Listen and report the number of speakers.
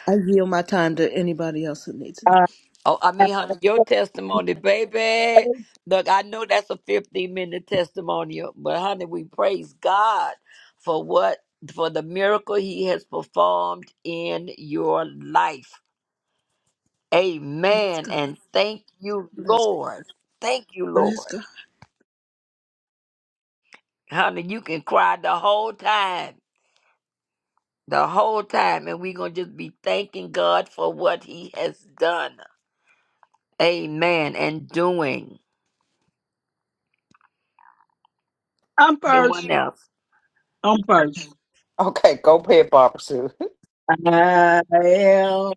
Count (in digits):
4